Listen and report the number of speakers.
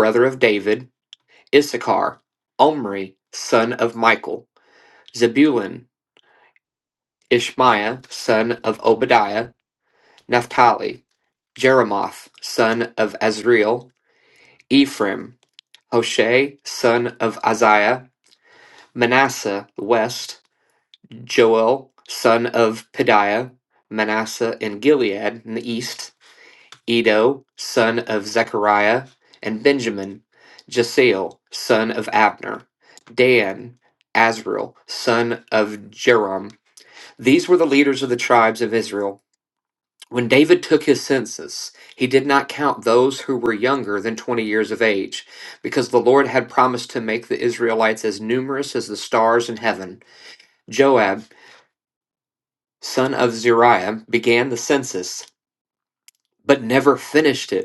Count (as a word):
one